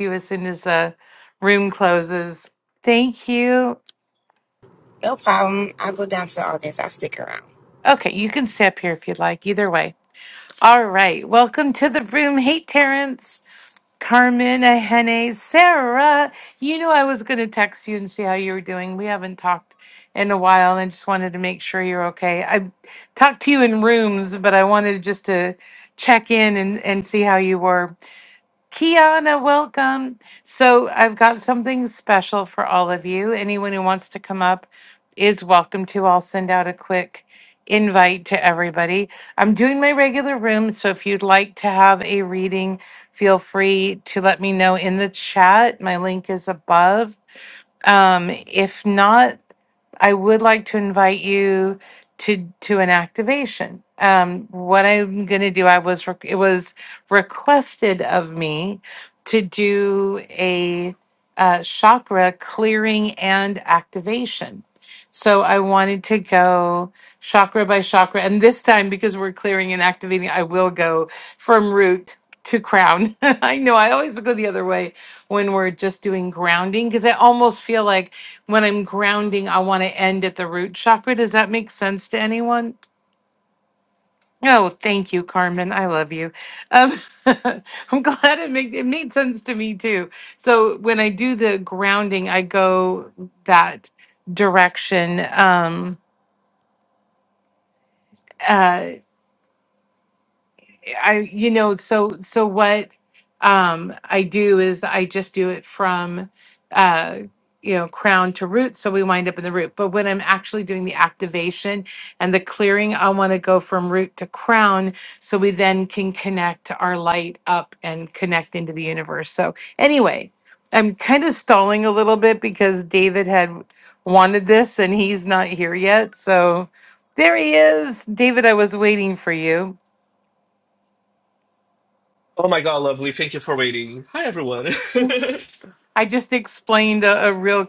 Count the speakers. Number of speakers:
3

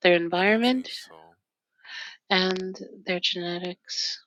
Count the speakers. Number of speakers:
2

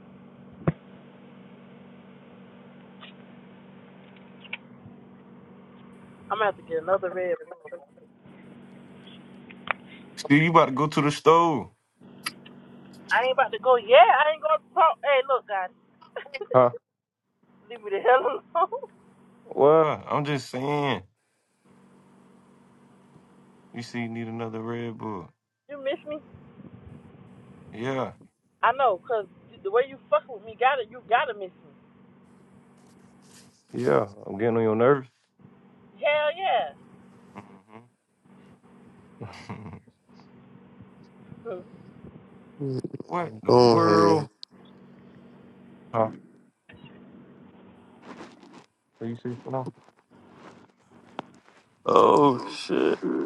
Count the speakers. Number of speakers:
3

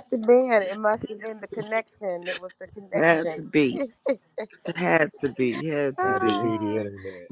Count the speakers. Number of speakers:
3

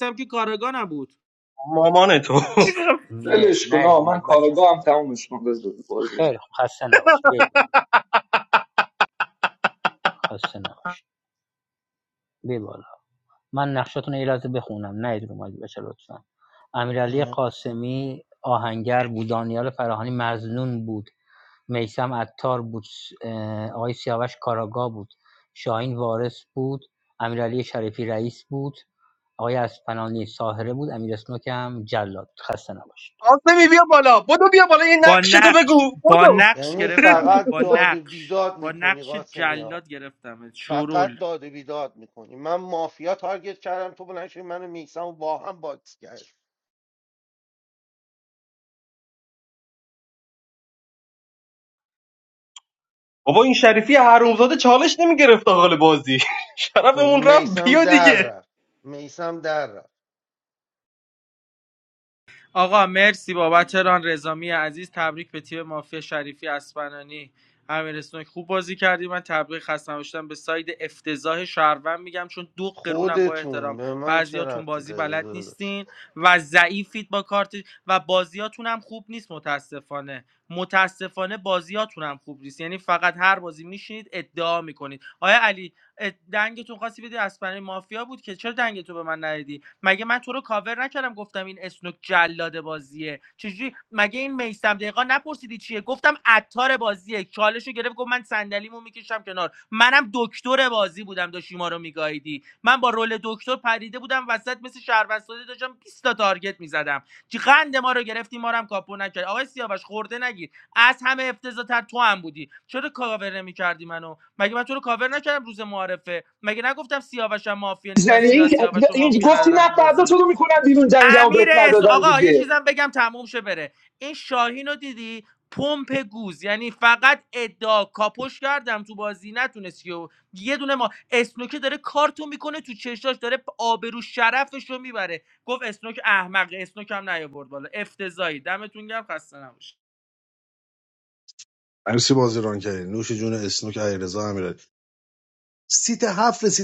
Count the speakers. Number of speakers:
6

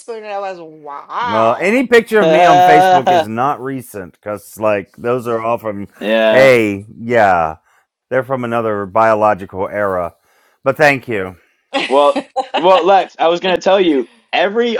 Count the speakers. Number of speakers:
3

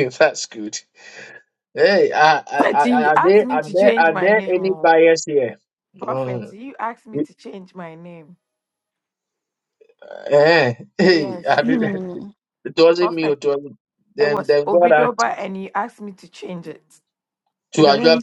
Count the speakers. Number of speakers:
3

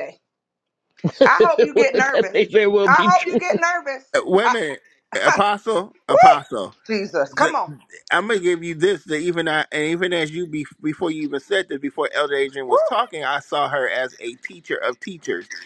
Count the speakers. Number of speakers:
3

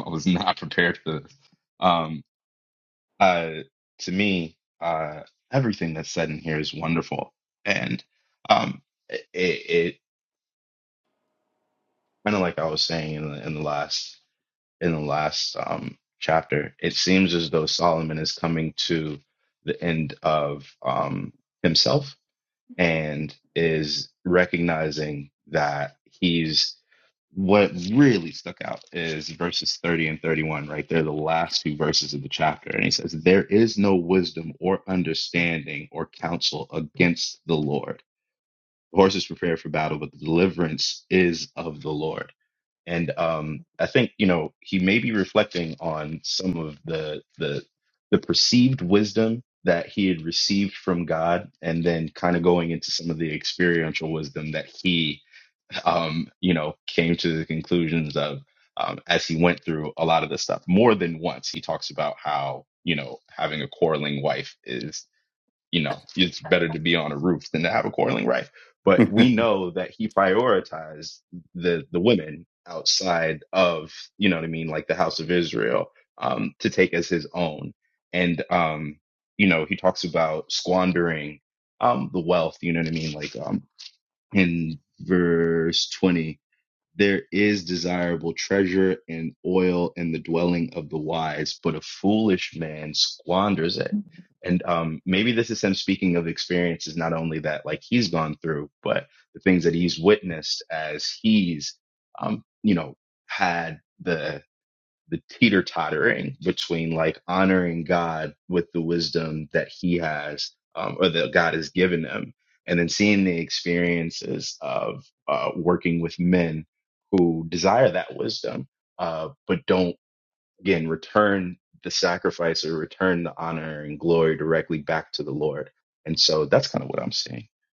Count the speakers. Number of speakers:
1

